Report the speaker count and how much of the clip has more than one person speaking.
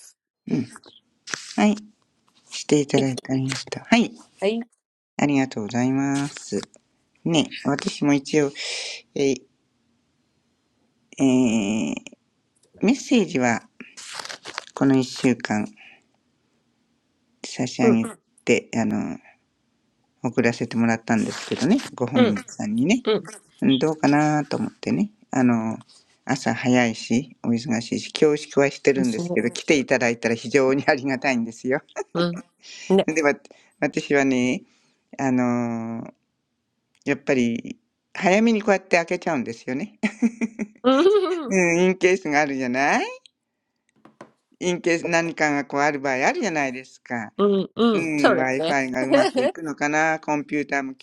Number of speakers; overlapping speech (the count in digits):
2, about 3%